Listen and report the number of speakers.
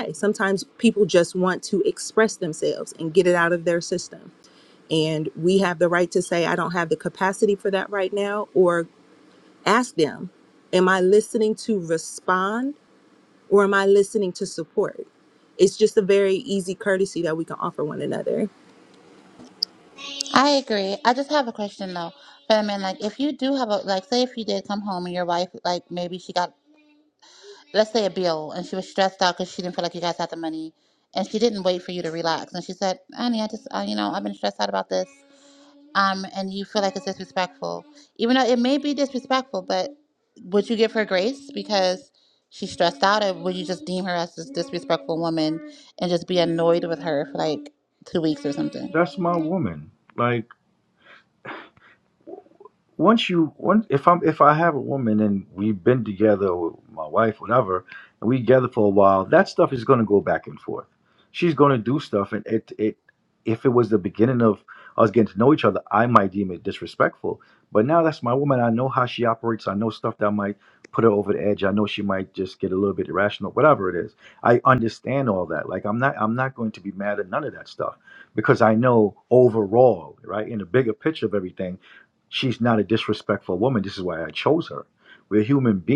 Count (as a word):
three